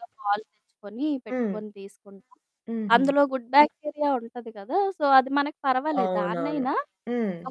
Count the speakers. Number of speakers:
two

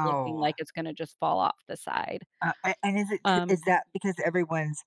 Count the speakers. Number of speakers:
two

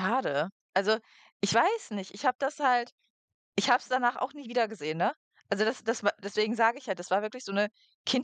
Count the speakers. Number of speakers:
one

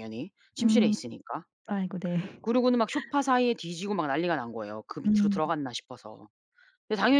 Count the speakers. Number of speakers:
two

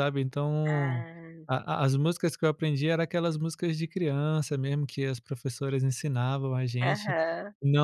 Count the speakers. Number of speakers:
two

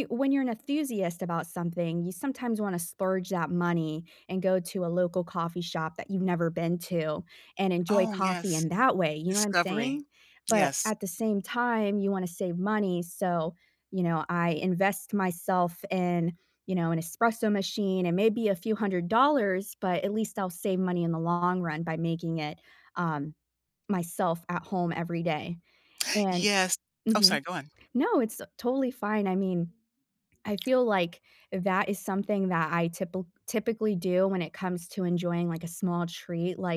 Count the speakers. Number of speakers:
two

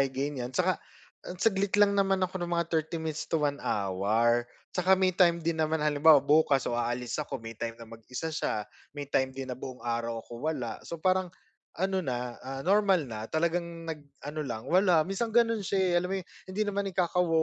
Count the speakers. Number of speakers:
one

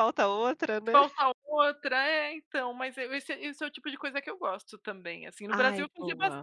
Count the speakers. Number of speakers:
two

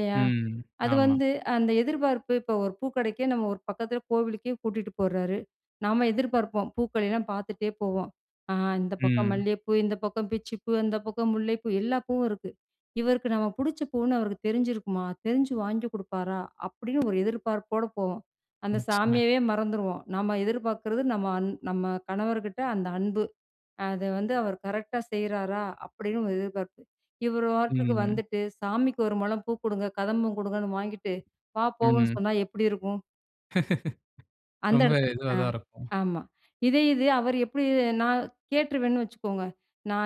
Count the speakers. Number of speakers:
two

